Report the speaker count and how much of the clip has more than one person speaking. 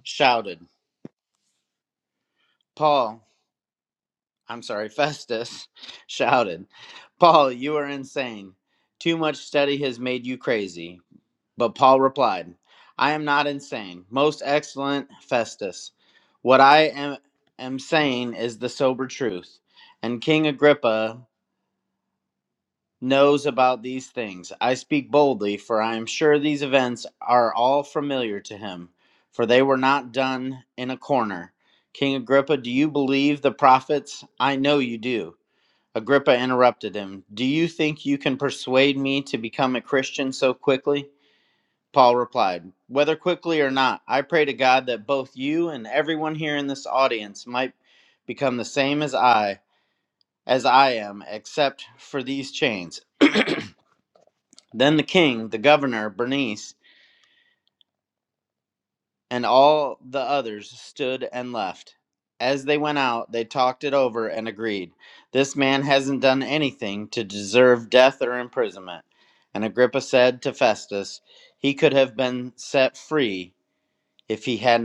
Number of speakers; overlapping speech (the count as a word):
one, no overlap